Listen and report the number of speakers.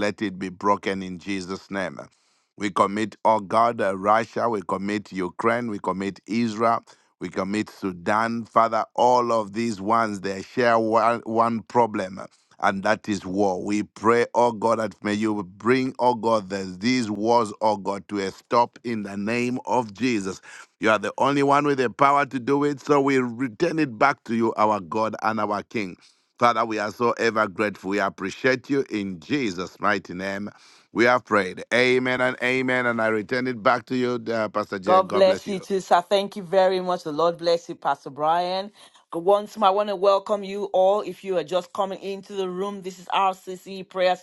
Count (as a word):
two